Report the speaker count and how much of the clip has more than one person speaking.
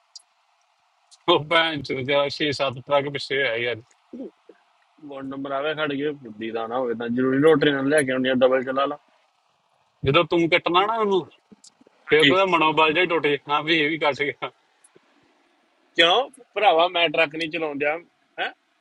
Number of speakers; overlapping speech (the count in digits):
2, about 1%